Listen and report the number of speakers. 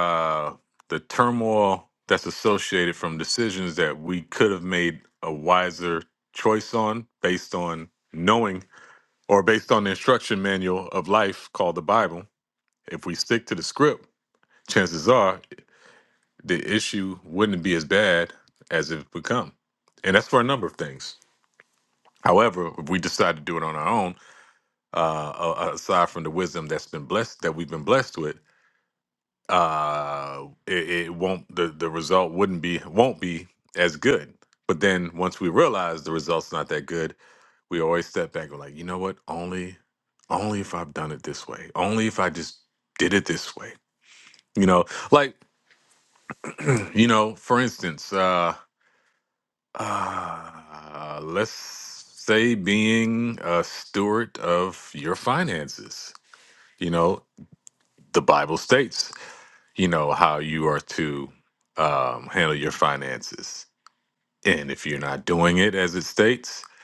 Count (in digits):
1